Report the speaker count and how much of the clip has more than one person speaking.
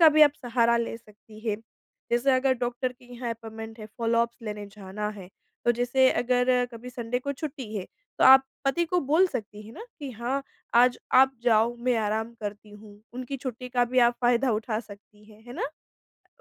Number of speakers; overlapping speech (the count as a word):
one, no overlap